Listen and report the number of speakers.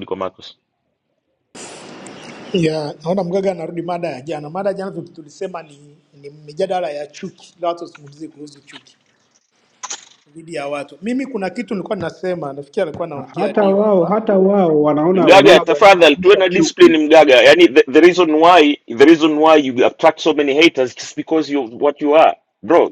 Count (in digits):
3